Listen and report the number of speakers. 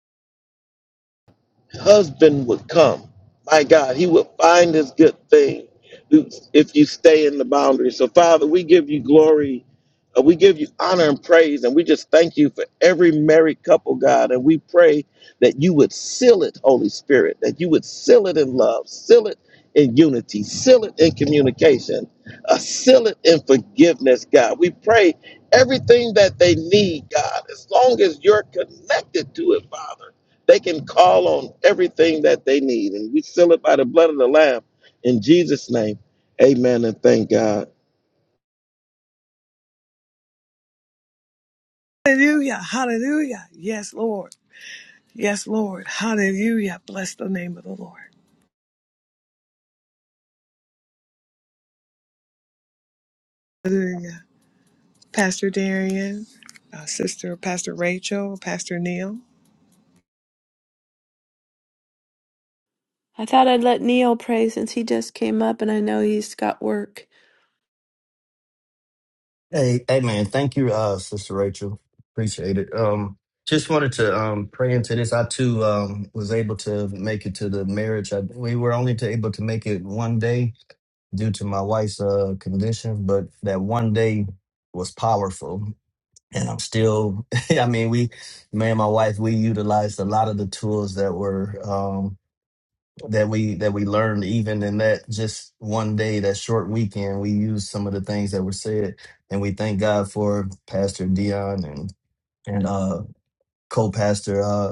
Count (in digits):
4